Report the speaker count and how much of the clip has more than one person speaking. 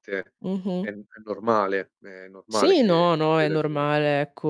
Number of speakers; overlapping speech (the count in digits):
2, about 13%